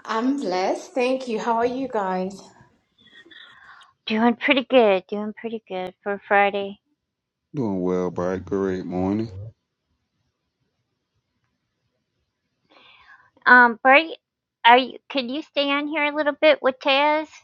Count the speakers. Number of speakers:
three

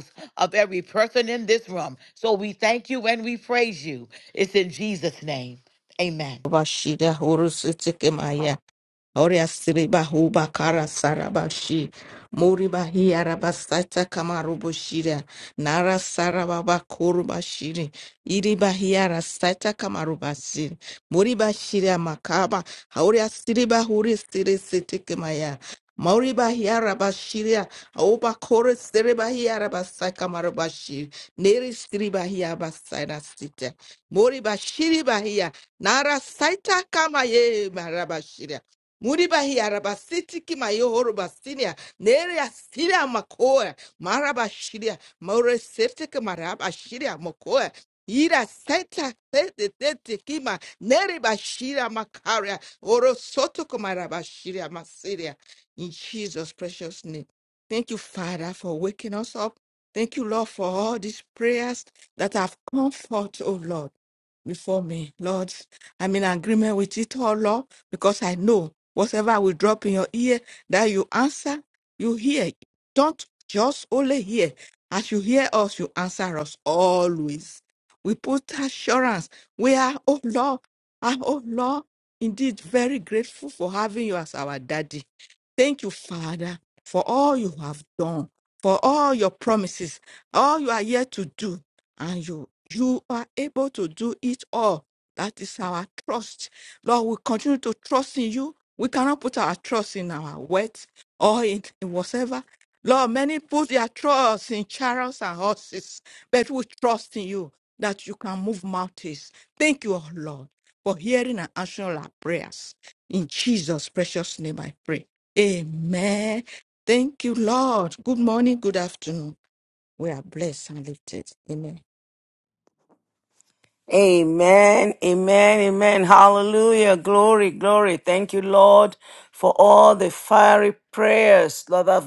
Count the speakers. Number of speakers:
three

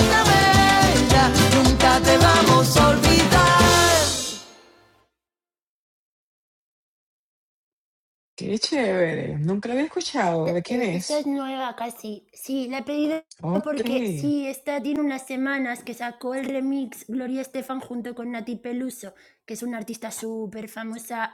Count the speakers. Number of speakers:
three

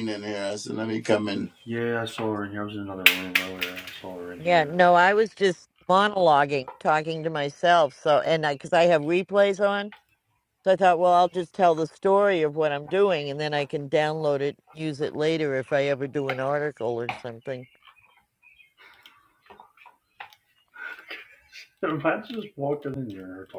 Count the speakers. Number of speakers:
three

